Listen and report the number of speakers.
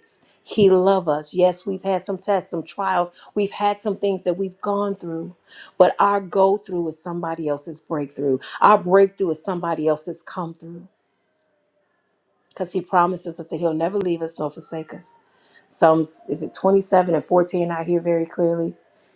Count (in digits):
1